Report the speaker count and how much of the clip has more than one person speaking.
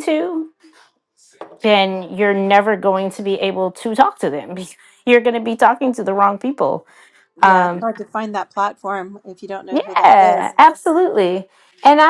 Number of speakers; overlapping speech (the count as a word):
two, about 10%